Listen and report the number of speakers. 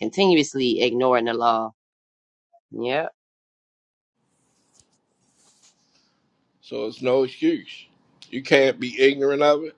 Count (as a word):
two